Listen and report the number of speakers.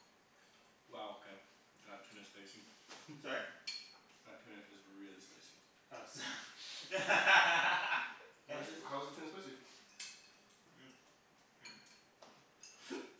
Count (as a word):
three